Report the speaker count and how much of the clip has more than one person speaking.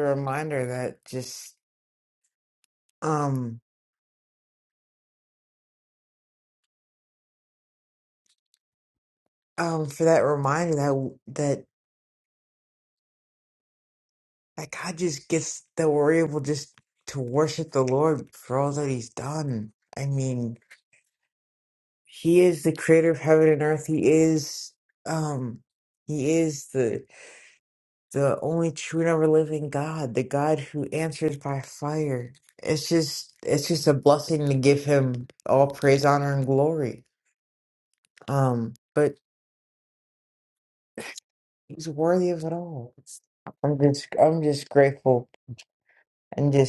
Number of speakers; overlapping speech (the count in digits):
1, no overlap